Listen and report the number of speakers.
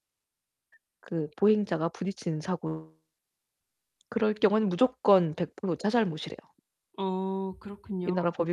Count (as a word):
two